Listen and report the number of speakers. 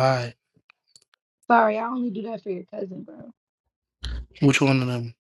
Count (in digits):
2